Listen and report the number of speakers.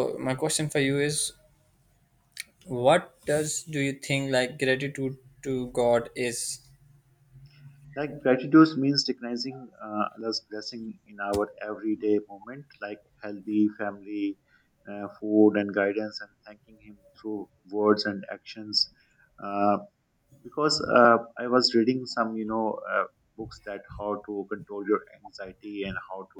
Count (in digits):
2